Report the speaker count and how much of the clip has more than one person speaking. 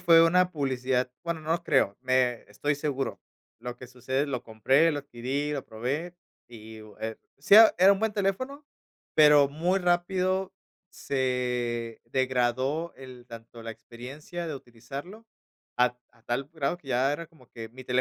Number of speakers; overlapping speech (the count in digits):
1, no overlap